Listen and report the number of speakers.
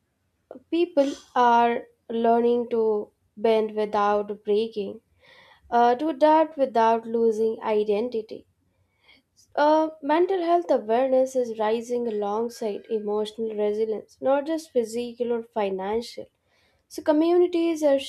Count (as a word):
one